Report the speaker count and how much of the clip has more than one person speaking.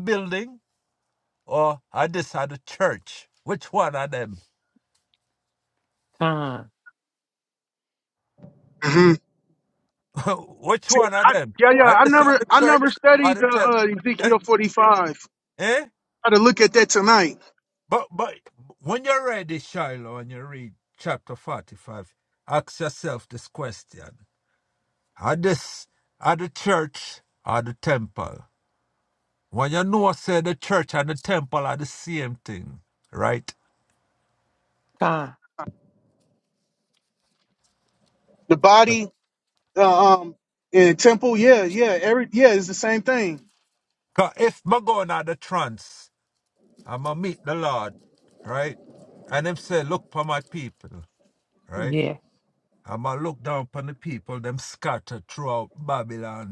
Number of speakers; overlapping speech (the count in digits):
3, about 5%